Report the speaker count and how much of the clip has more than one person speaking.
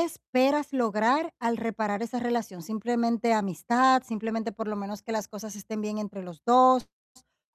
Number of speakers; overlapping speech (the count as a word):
one, no overlap